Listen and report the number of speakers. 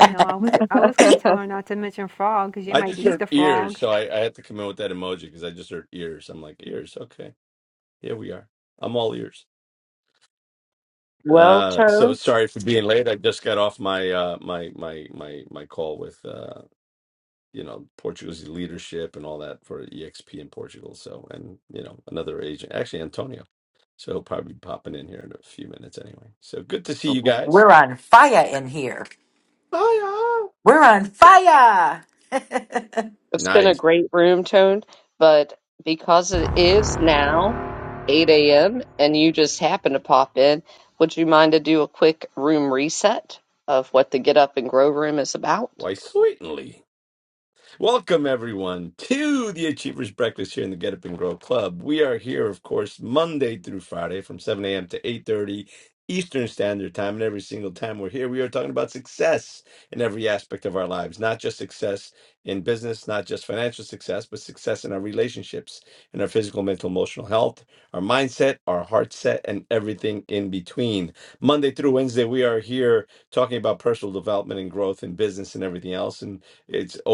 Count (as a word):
four